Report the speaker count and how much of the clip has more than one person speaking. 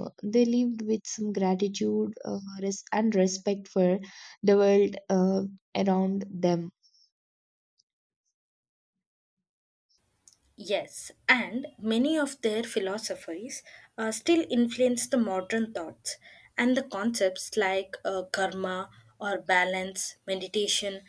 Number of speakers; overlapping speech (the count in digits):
2, no overlap